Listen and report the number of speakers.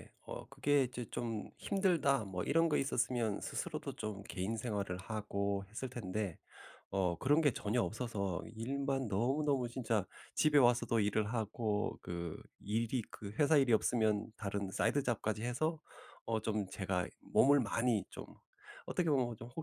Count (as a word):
one